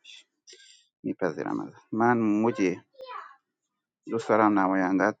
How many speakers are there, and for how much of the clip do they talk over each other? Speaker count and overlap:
1, no overlap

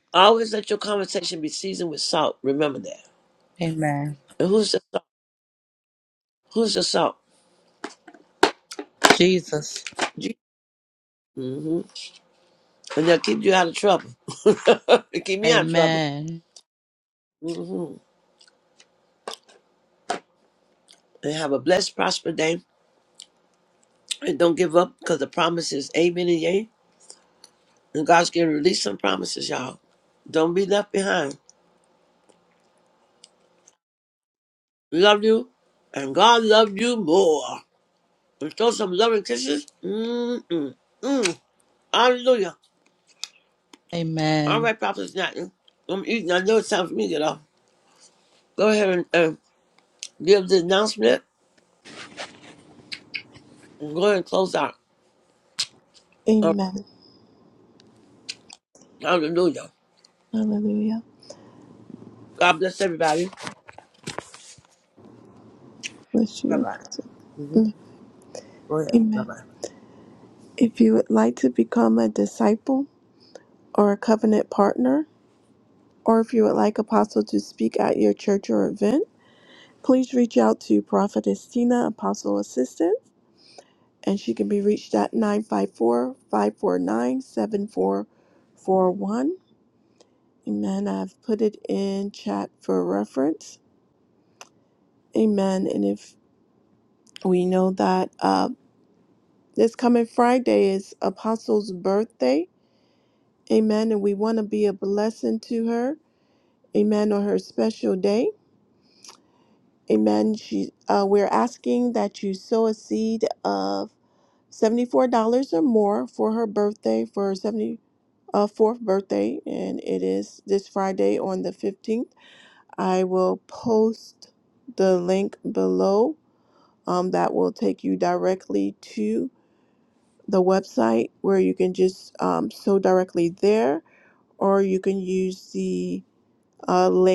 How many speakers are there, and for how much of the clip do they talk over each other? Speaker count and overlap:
3, about 1%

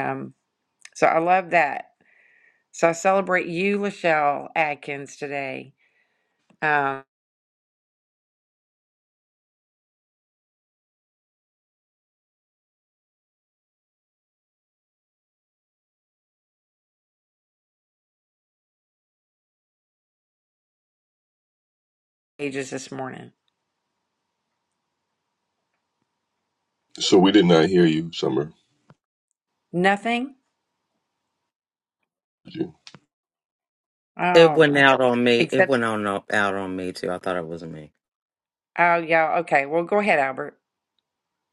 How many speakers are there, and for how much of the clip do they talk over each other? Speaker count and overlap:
3, about 2%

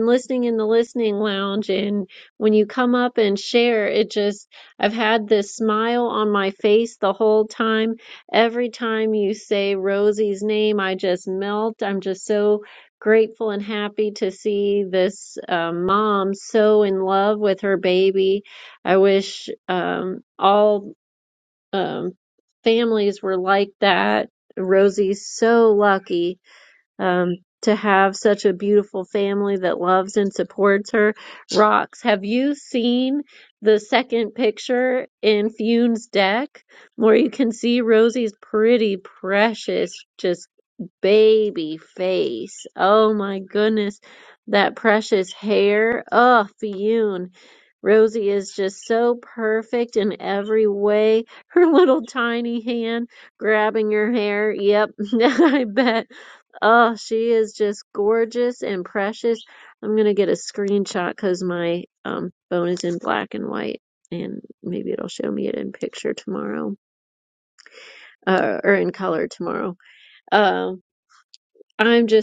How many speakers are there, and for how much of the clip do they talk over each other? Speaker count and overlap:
1, no overlap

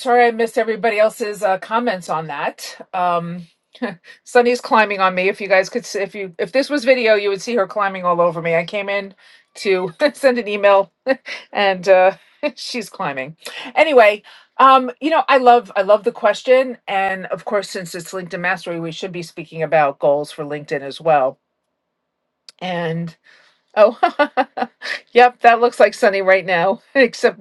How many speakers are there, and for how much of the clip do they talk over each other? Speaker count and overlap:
1, no overlap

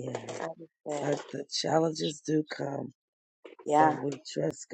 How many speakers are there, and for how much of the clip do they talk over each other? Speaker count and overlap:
2, about 9%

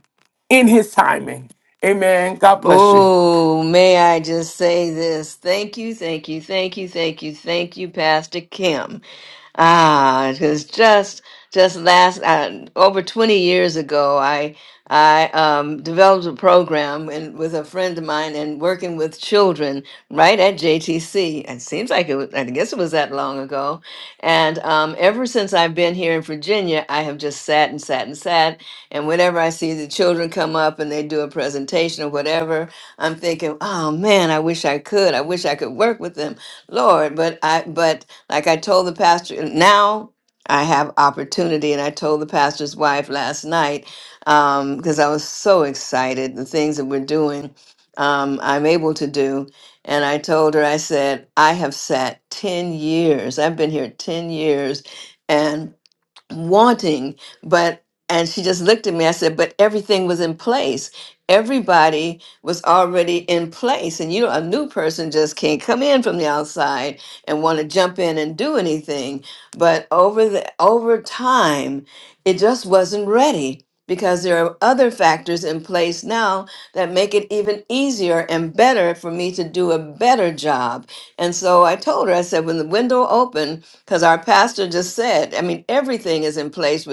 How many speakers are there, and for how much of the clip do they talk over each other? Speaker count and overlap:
2, under 1%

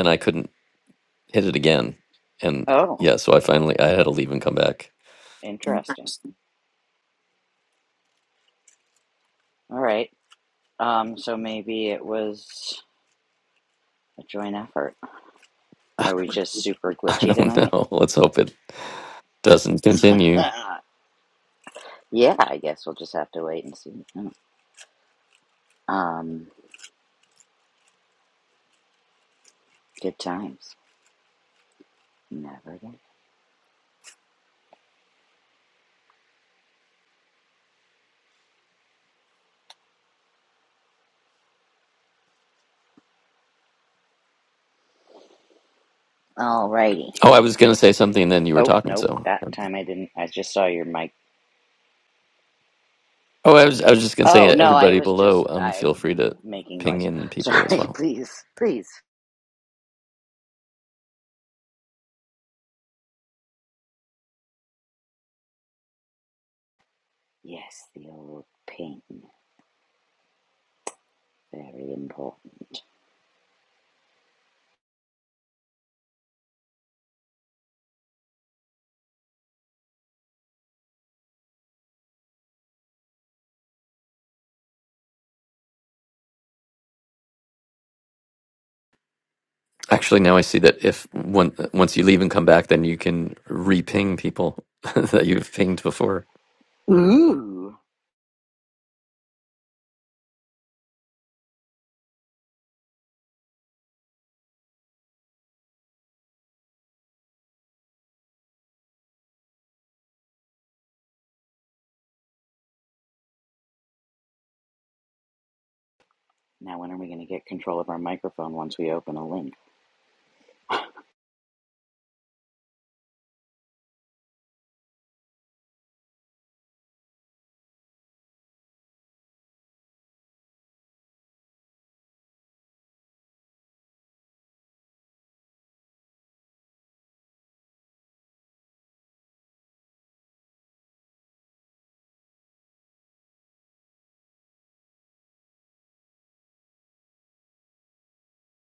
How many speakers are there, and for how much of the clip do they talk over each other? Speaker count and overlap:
2, about 3%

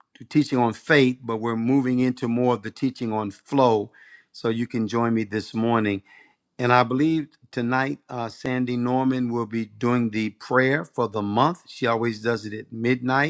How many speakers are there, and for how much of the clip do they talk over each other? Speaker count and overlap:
1, no overlap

